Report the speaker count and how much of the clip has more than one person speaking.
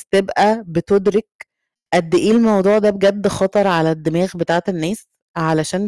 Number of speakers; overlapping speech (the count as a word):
one, no overlap